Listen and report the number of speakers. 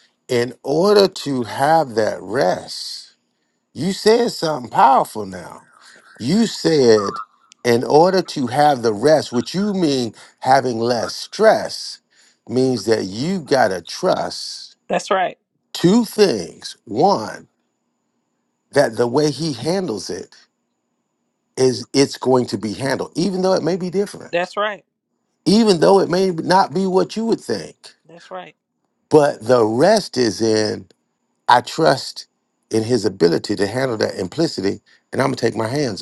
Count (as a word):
two